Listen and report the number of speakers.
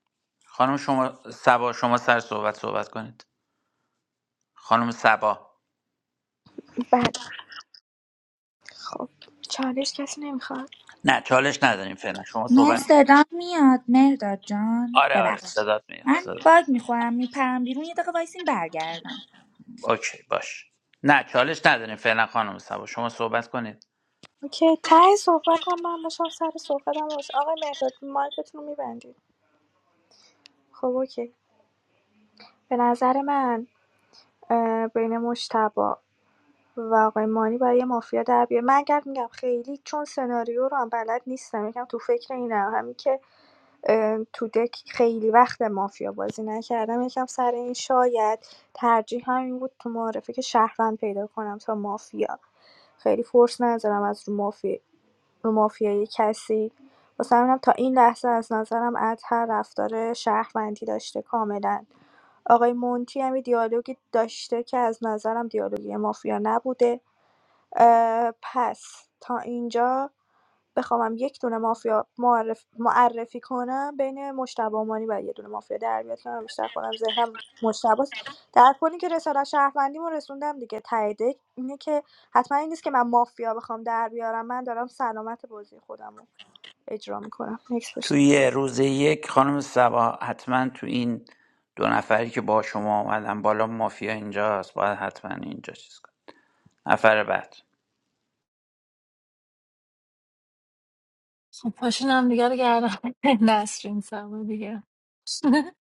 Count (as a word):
four